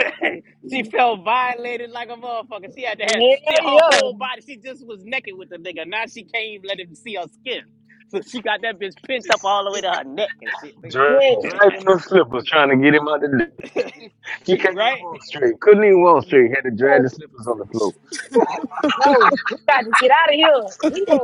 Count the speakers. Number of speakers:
three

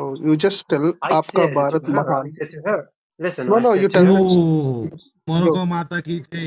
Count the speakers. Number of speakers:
three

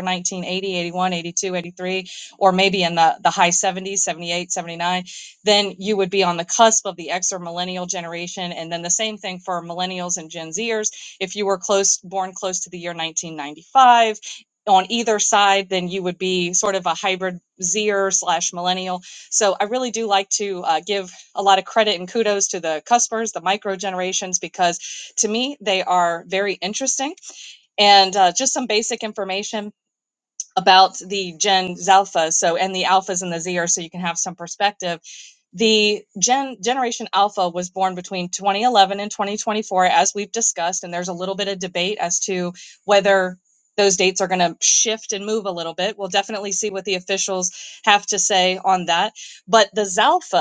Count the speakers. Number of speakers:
one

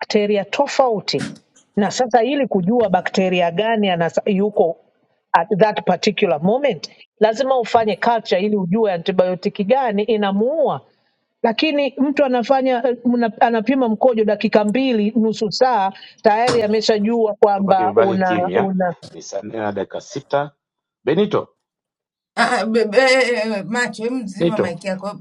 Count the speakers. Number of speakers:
three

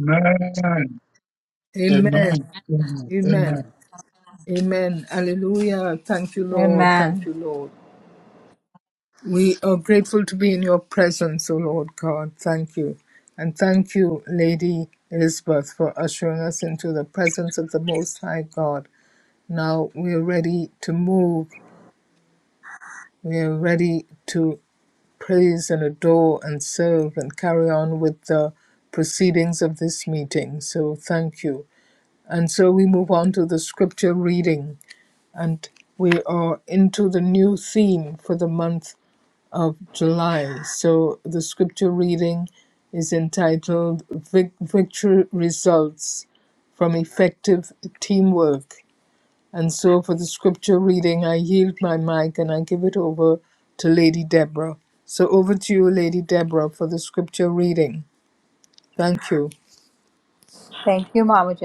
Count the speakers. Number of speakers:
three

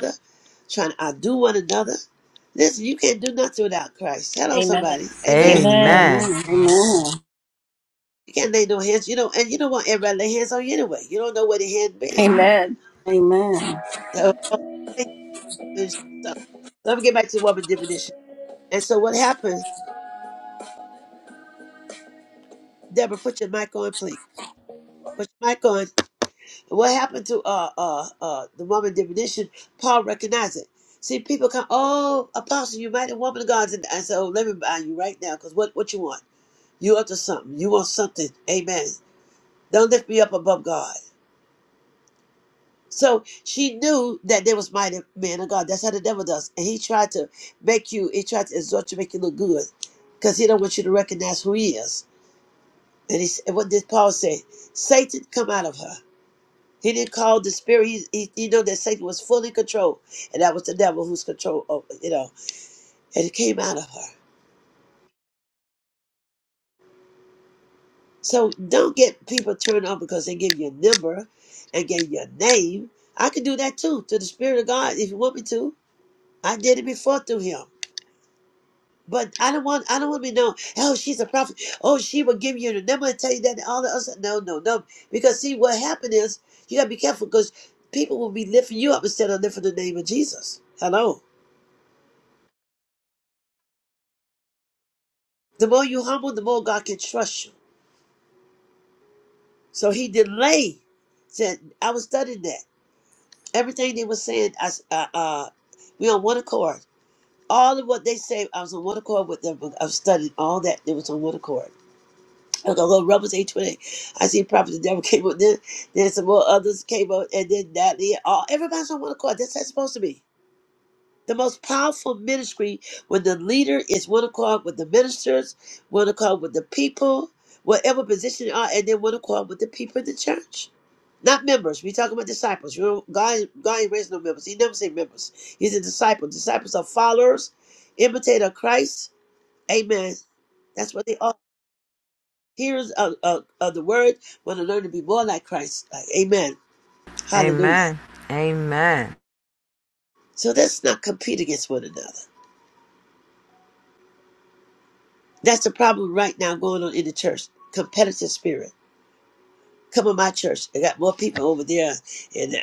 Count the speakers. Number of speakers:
four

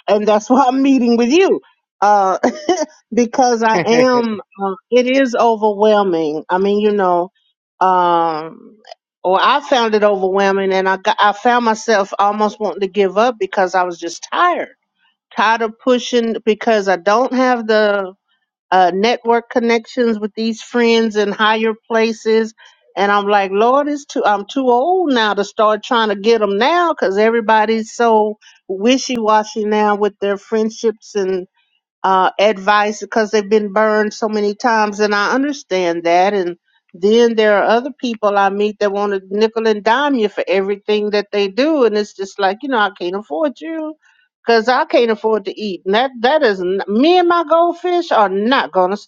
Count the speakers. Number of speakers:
one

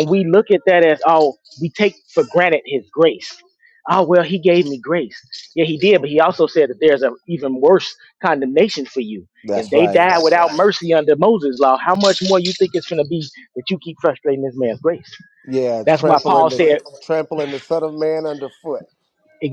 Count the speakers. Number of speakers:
two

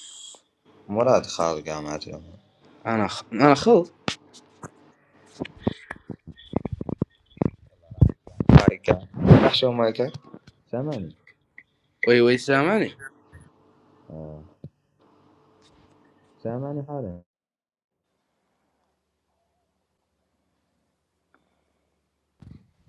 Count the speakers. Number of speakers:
two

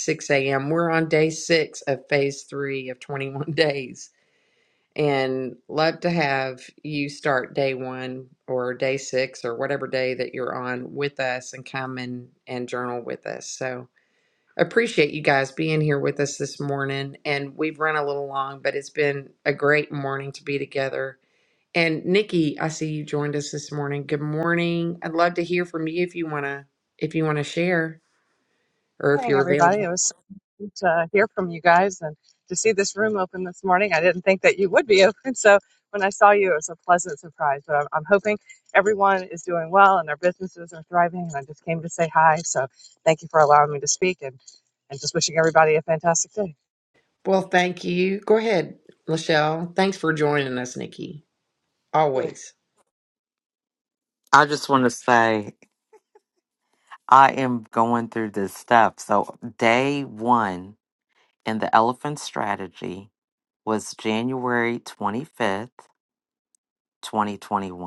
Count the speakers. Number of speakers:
three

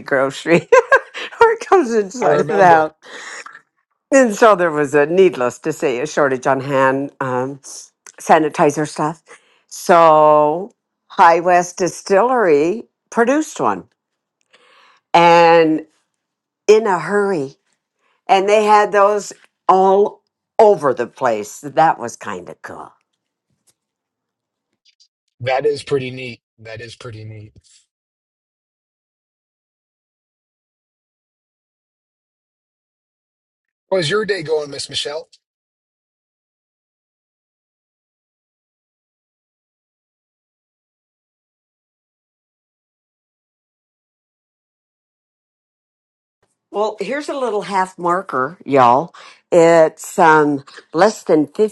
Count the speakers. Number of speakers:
two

